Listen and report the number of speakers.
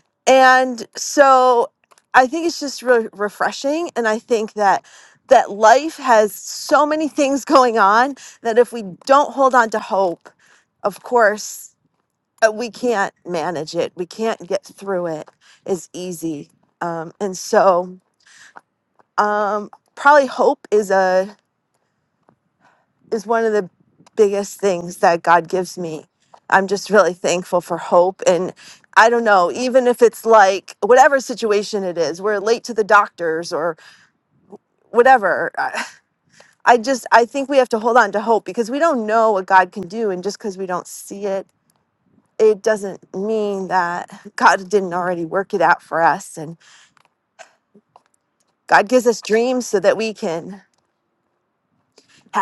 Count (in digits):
1